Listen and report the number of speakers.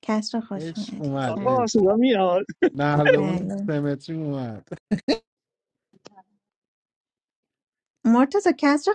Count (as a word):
three